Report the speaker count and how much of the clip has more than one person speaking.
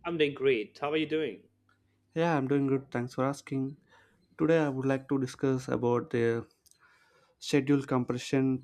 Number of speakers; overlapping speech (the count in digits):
2, no overlap